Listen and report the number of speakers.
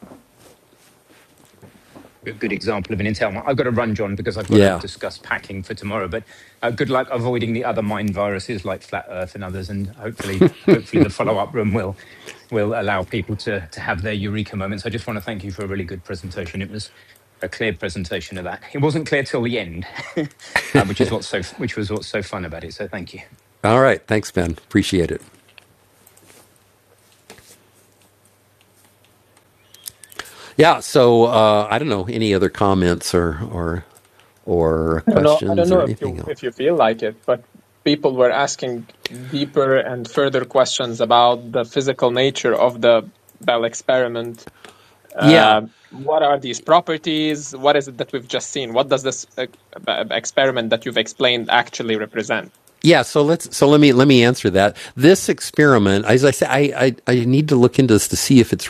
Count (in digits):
3